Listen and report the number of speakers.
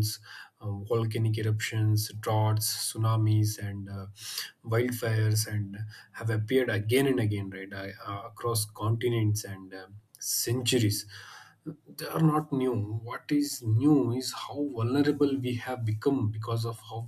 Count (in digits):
1